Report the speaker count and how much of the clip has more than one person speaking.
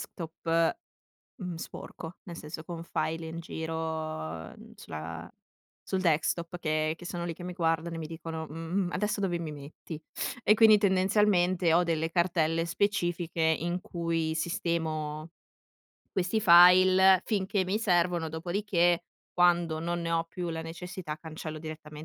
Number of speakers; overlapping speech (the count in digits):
1, no overlap